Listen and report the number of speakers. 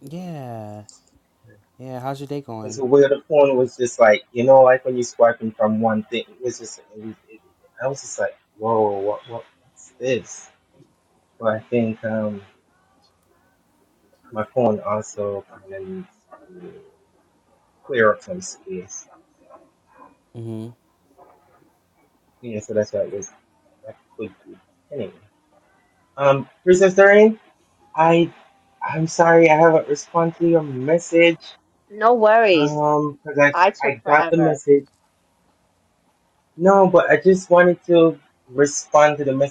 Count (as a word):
three